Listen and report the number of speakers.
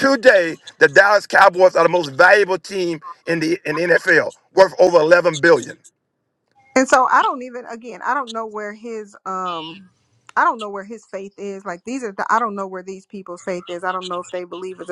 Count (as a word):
two